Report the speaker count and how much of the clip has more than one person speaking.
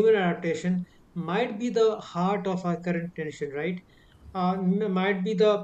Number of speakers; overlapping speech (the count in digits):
1, no overlap